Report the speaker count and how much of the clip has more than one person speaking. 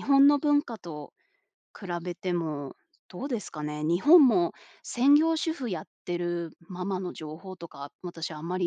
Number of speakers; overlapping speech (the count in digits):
1, no overlap